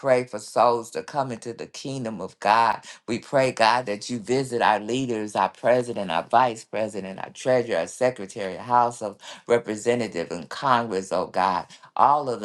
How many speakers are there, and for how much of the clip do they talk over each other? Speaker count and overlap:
1, no overlap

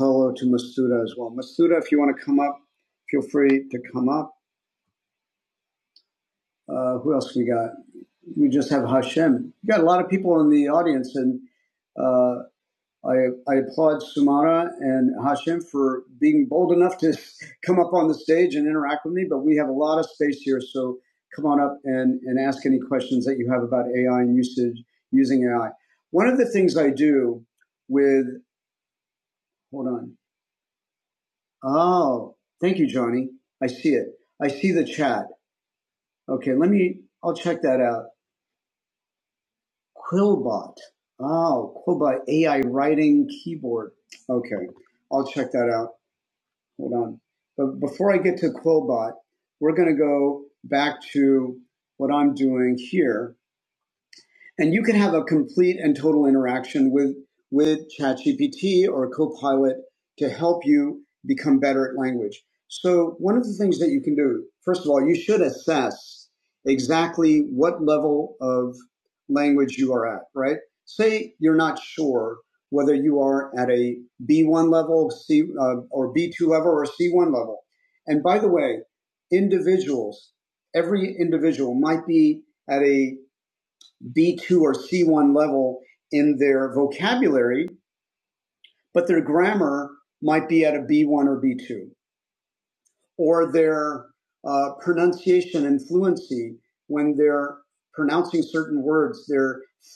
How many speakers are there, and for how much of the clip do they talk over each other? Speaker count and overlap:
1, no overlap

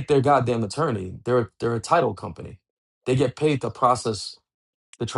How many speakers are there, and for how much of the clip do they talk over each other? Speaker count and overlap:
1, no overlap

